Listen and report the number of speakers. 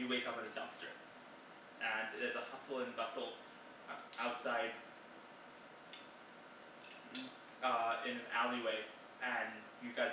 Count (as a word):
one